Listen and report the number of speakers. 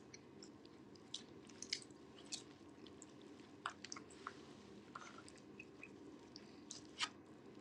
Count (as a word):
zero